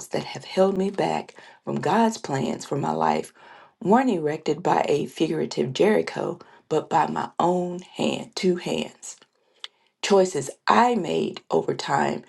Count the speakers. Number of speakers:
1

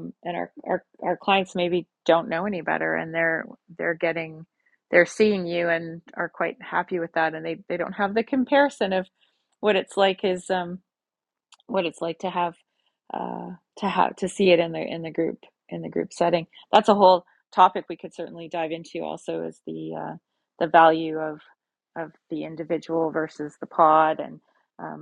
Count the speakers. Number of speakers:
1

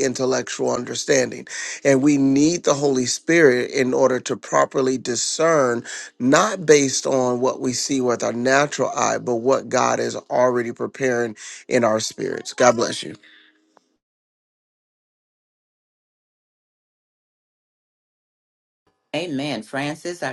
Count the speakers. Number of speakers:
2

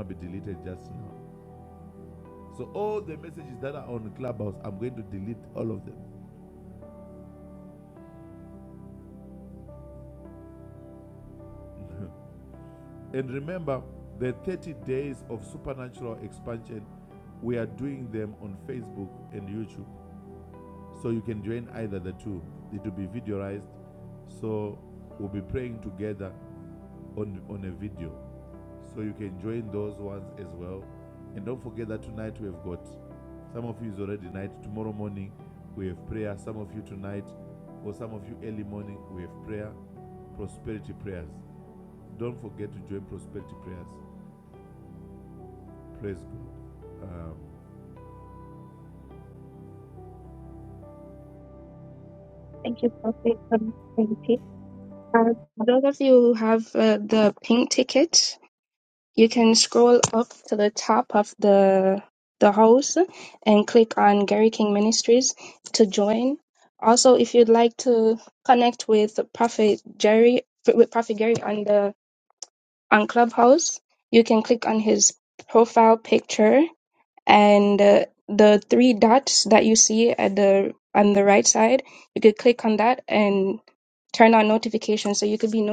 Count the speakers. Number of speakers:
2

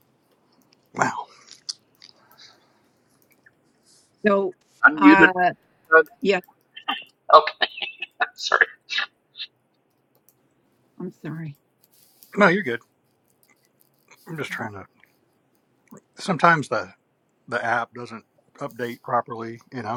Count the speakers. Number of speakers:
3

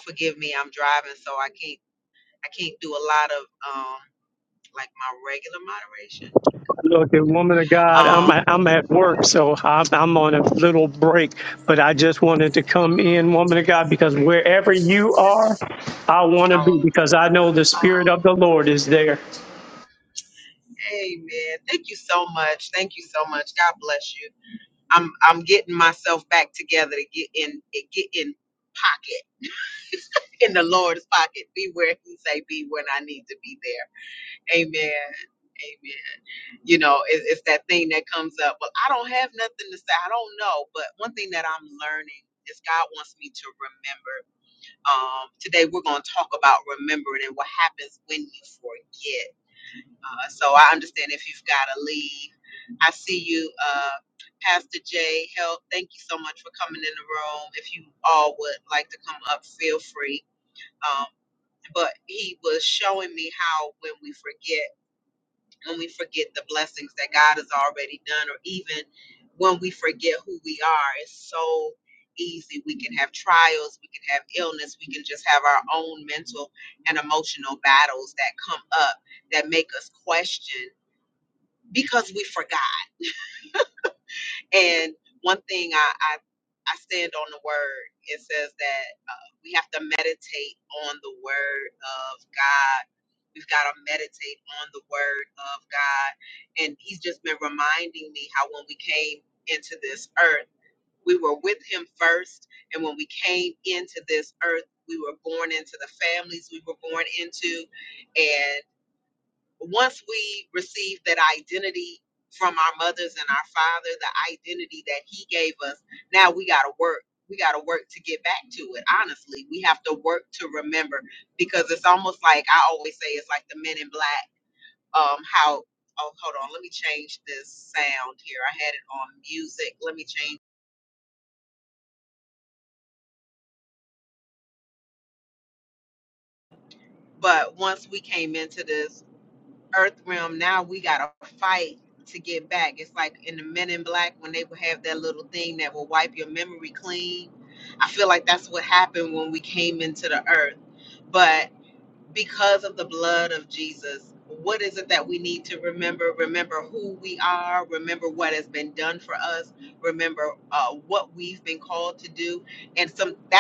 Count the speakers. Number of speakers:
2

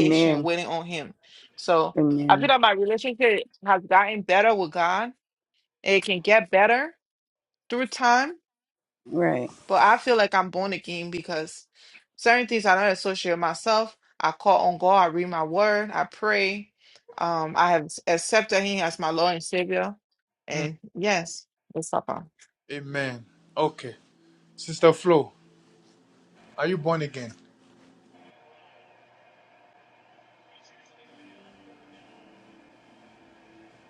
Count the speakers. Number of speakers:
3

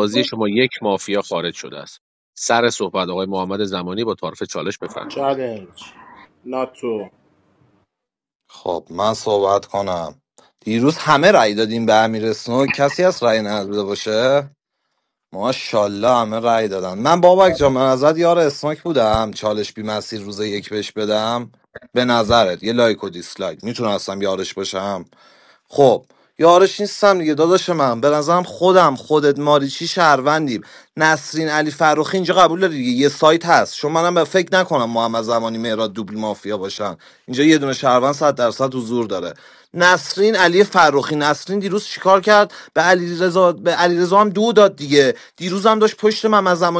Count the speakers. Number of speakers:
3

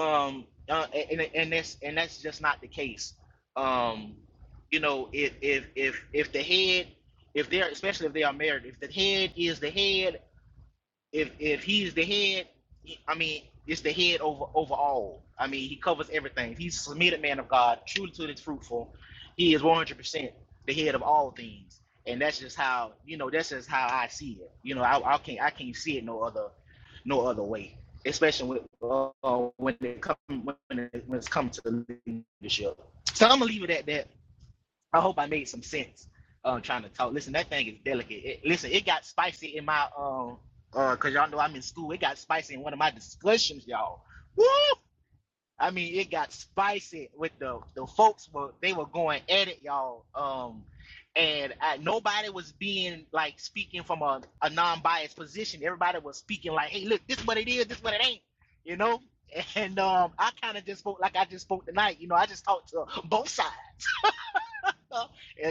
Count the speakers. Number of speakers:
1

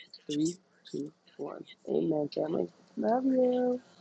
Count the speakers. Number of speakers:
1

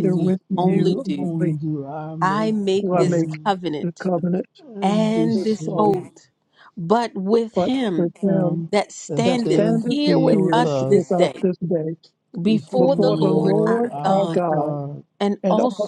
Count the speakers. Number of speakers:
3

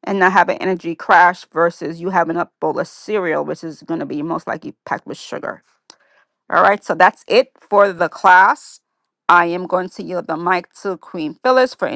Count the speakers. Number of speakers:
1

